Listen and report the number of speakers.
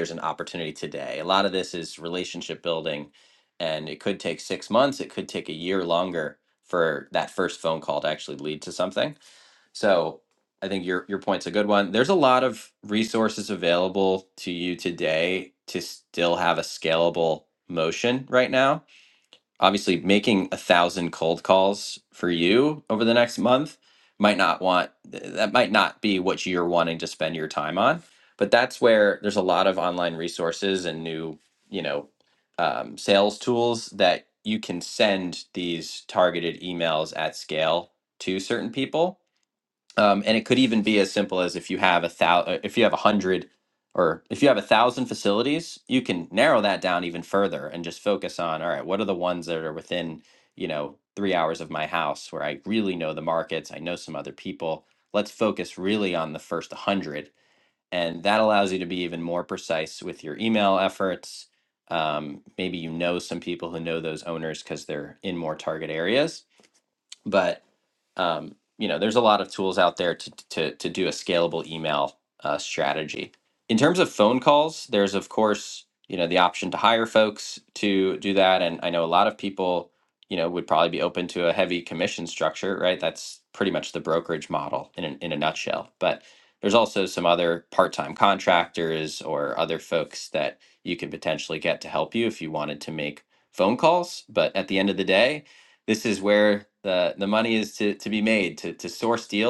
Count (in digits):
1